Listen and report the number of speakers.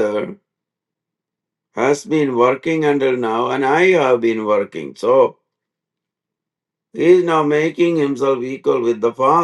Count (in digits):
1